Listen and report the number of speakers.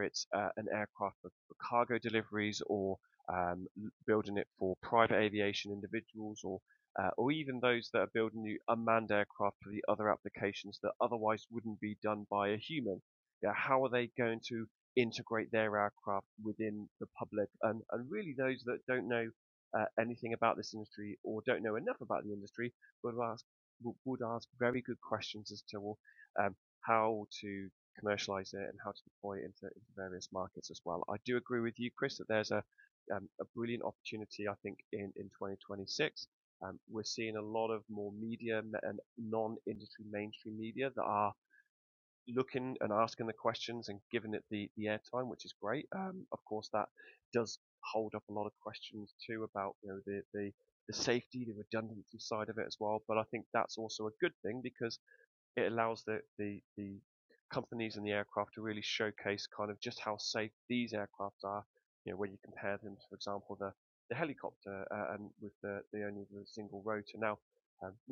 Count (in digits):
1